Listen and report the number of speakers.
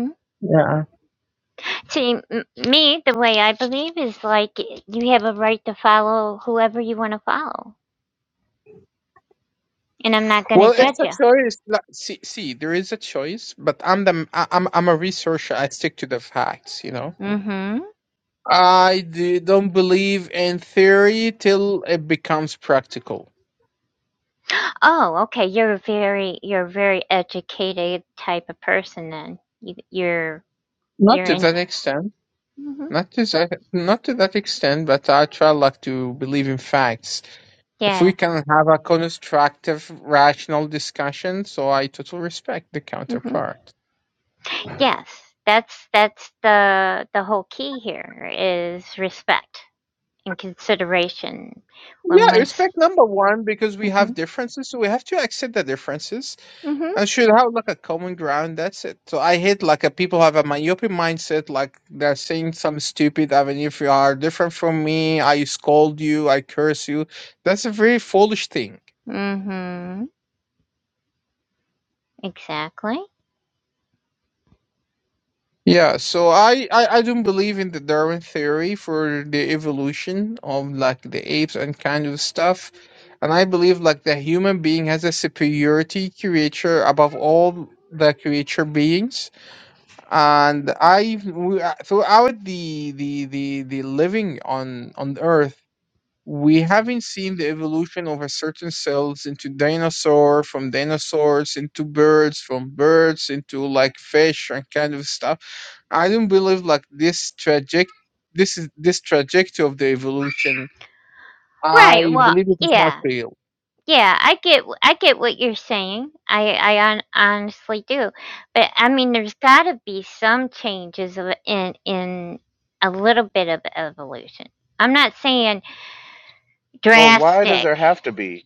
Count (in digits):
3